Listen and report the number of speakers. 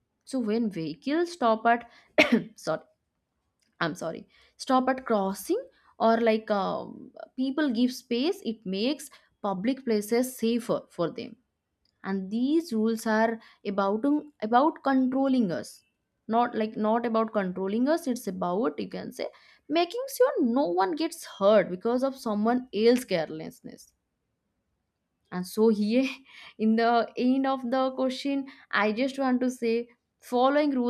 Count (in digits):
1